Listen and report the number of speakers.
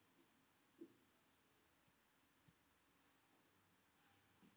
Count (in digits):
0